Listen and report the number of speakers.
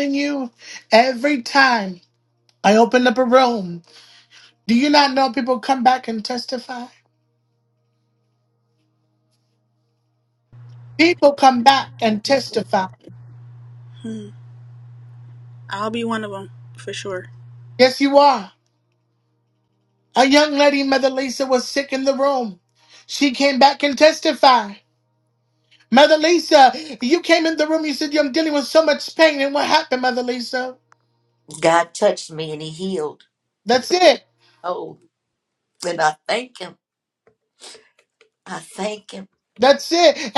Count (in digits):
3